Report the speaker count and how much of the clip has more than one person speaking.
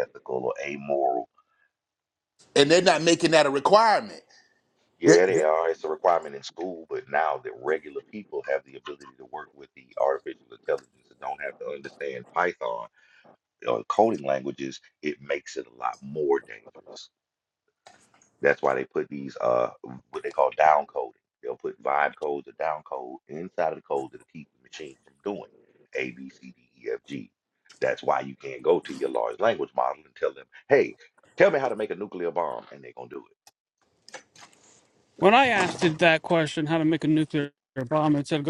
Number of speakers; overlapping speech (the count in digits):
3, about 1%